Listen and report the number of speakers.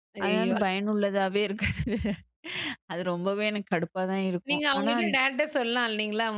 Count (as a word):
two